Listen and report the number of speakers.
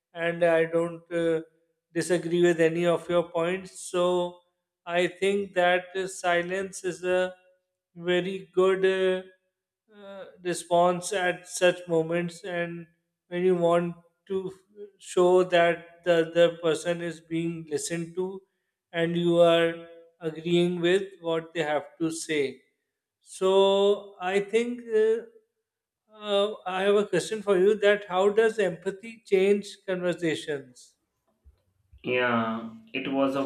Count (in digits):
2